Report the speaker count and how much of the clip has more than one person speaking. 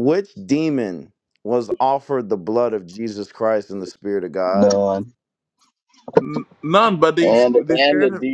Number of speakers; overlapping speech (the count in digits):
3, about 14%